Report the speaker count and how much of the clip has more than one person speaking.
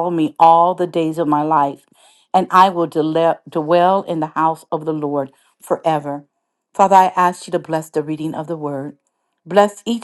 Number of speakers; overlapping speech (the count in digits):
1, no overlap